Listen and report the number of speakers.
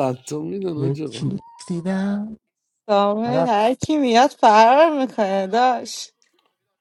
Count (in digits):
3